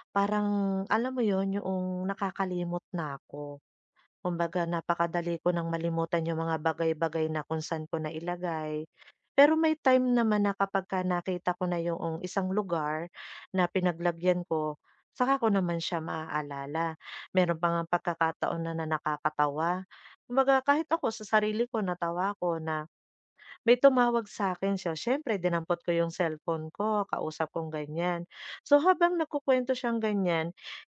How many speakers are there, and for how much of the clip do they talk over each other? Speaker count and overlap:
one, no overlap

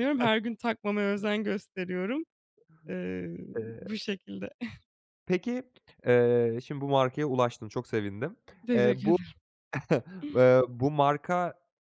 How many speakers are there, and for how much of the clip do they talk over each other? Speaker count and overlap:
two, about 6%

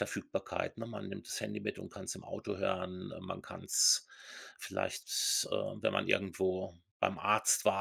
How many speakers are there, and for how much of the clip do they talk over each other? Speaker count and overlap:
one, no overlap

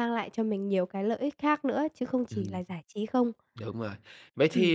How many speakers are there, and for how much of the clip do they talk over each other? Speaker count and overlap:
two, about 10%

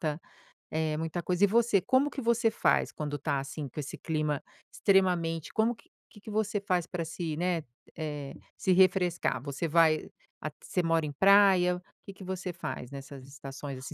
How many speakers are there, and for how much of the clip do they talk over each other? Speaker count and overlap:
one, no overlap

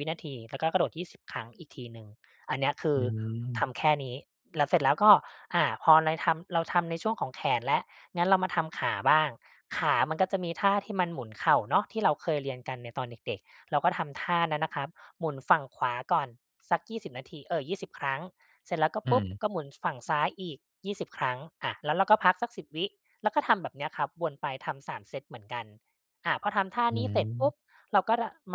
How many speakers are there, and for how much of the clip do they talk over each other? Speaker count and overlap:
two, about 3%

